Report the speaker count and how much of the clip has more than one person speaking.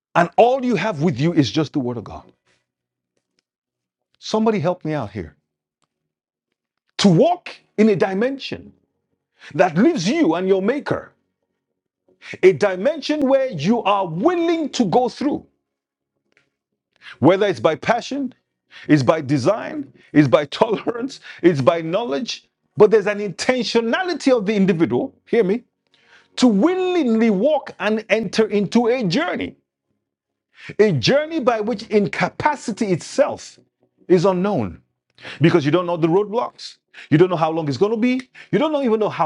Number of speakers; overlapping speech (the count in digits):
1, no overlap